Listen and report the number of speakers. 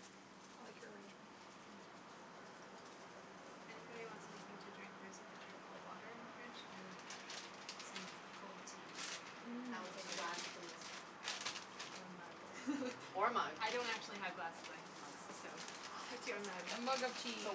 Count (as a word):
three